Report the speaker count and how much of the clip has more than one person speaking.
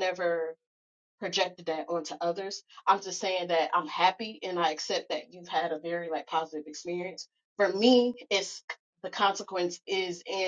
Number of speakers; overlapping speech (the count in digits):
1, no overlap